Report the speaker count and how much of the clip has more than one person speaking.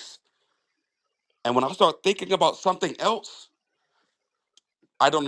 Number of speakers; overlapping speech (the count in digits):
1, no overlap